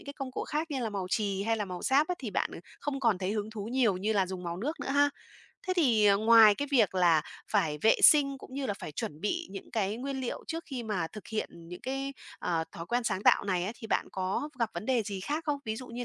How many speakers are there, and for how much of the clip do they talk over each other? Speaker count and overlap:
1, no overlap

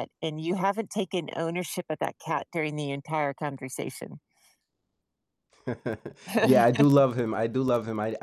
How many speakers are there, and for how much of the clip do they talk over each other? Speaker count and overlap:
2, no overlap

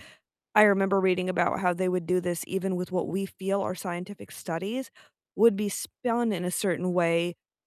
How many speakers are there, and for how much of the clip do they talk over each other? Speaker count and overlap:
1, no overlap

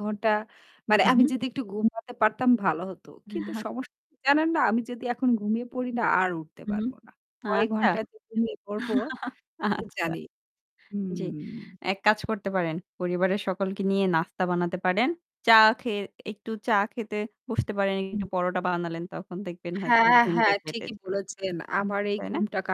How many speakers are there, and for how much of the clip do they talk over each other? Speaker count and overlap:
2, about 16%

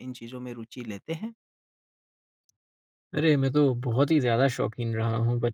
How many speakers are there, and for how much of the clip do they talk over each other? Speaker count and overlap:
2, no overlap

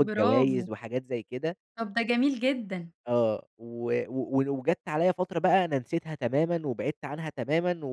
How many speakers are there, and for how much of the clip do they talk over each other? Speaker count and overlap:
2, about 9%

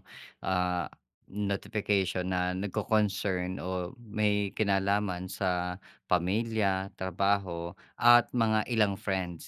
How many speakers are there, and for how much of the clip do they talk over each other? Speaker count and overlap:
1, no overlap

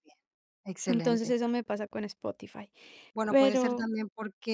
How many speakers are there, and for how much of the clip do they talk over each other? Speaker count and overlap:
2, about 21%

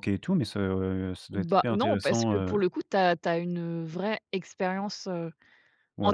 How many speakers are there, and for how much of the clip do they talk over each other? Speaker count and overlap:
2, about 22%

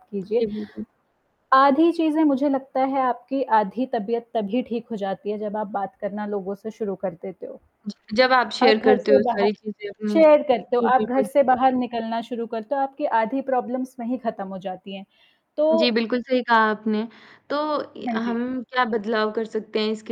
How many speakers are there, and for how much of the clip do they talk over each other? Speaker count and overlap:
2, about 10%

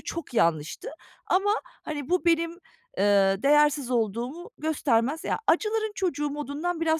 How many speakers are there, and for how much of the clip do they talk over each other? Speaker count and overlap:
1, no overlap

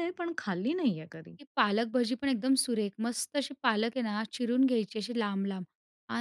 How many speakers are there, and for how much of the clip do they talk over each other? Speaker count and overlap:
2, no overlap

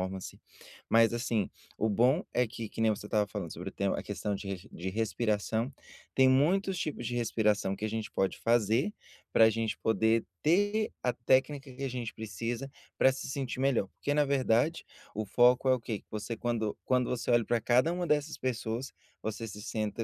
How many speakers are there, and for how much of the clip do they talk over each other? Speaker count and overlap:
1, no overlap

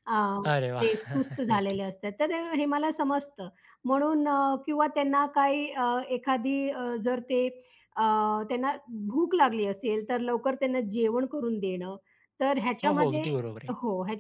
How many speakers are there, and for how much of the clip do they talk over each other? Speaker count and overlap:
2, about 6%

